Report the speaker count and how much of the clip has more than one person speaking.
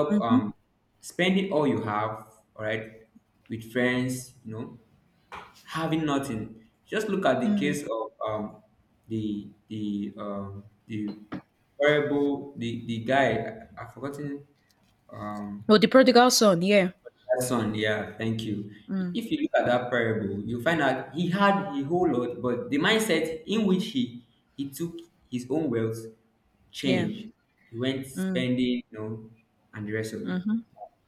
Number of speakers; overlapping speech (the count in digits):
2, about 4%